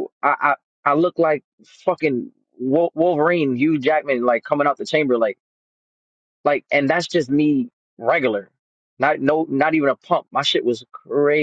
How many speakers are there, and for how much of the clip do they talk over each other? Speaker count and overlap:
one, no overlap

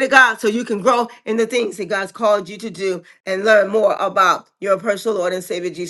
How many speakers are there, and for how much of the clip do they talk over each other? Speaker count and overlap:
one, no overlap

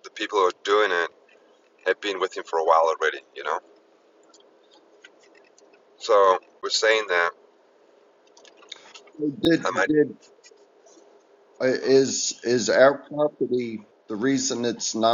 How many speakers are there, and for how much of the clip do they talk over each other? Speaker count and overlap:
two, about 2%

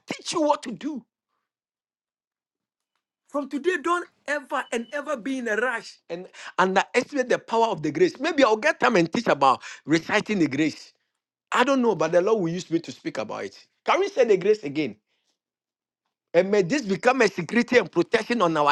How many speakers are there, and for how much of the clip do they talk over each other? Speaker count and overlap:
one, no overlap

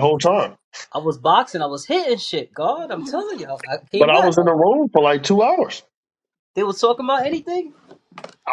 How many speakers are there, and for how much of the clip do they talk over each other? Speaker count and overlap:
two, about 7%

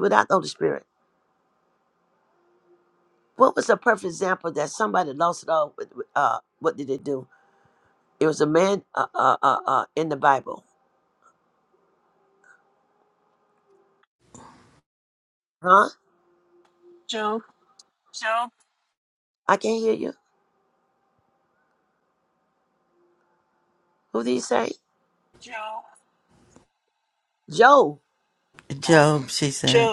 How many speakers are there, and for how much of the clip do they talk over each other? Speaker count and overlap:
three, about 2%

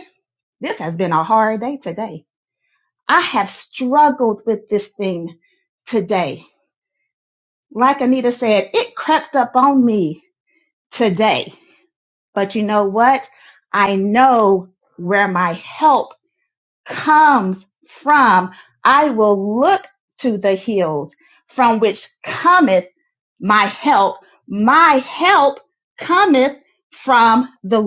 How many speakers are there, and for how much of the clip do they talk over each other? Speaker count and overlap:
one, no overlap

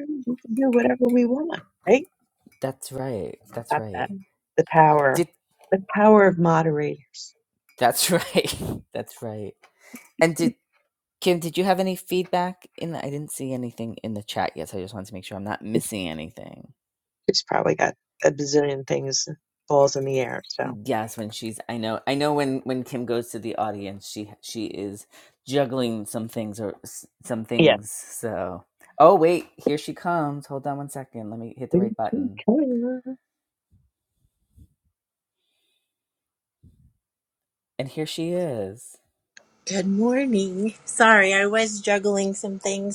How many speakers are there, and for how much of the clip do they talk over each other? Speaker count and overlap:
three, about 3%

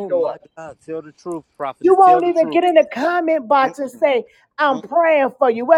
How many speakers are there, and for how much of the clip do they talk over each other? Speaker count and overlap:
two, about 29%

